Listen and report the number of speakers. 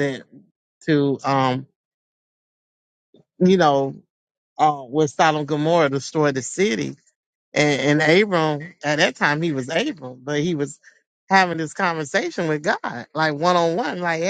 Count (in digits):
1